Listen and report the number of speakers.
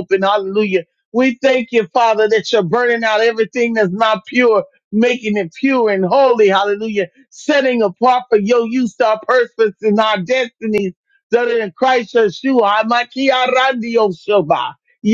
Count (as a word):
one